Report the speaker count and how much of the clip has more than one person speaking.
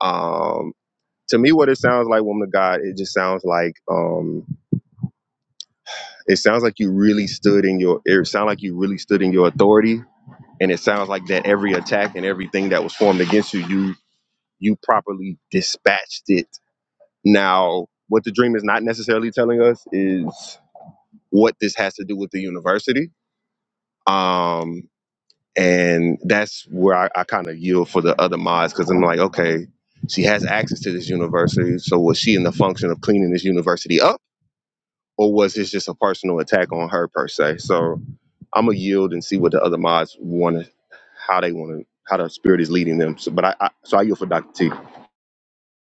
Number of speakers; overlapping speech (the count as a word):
one, no overlap